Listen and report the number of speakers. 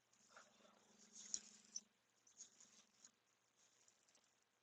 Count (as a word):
zero